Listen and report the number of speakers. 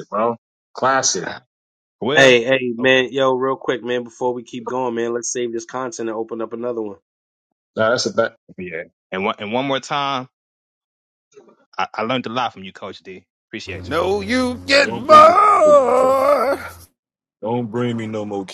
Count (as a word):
five